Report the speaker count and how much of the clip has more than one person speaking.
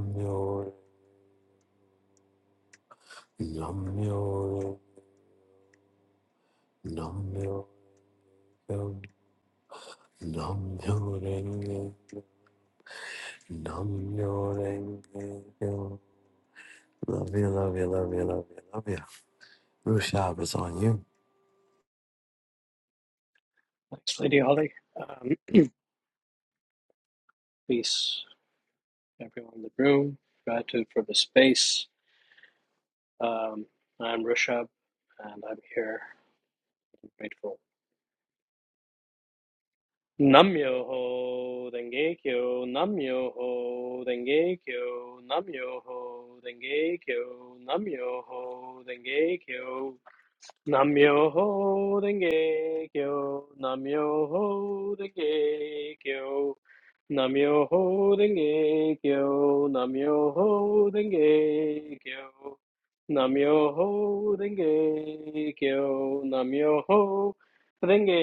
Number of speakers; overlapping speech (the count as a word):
two, no overlap